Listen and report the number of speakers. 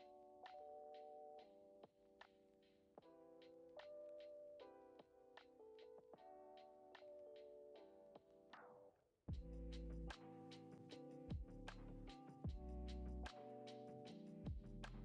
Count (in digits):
0